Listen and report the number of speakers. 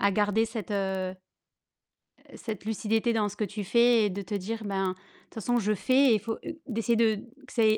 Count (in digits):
1